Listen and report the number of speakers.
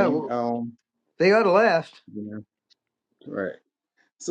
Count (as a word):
two